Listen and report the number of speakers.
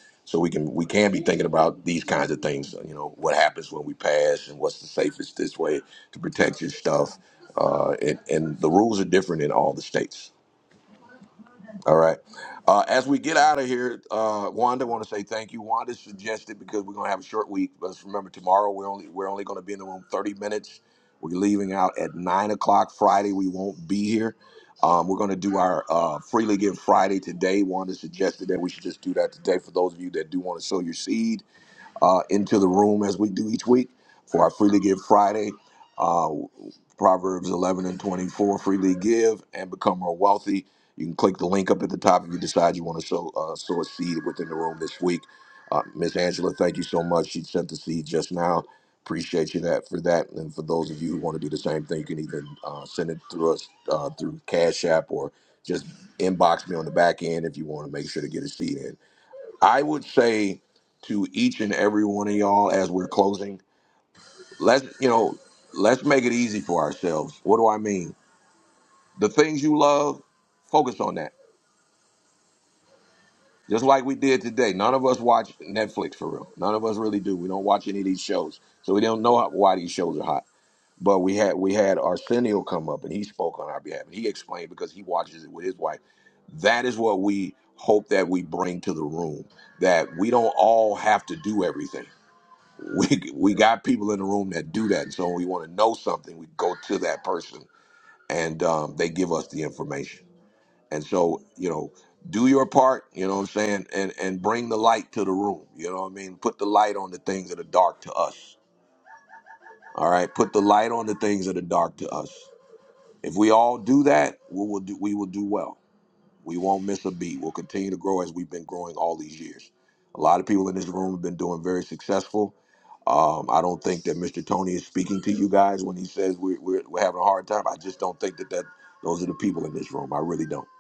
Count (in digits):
1